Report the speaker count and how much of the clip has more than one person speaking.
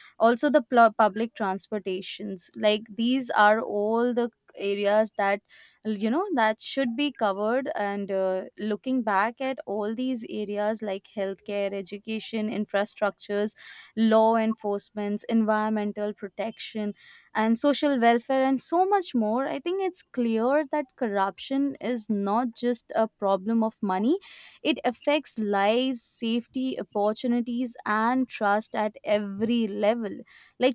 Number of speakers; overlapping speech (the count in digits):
1, no overlap